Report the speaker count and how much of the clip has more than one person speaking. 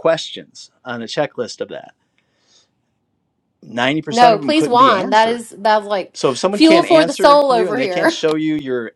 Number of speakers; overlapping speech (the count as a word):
two, about 32%